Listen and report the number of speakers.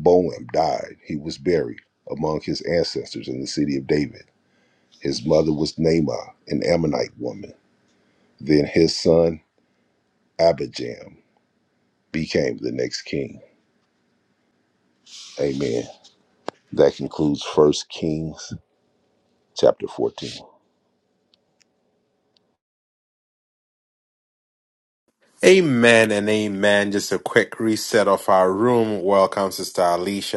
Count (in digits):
2